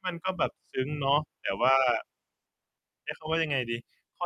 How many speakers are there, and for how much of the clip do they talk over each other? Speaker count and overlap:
1, no overlap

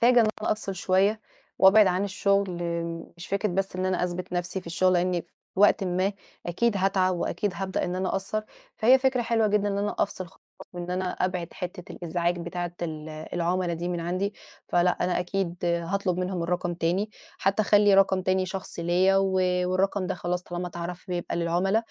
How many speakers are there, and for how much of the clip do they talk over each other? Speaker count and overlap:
1, no overlap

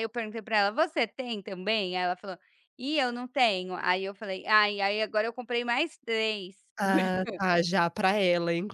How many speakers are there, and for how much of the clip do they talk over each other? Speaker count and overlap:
2, no overlap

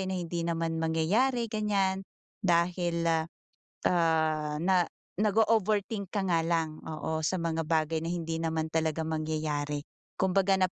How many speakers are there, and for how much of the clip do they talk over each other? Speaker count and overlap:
1, no overlap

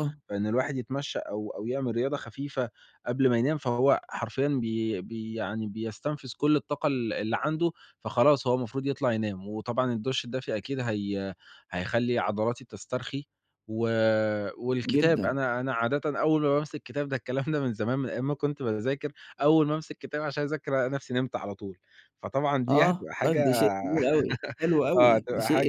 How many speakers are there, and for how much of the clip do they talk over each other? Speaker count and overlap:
2, about 8%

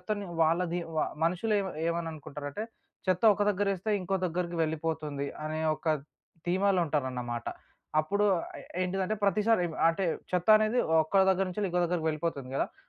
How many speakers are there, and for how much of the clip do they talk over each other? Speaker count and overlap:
1, no overlap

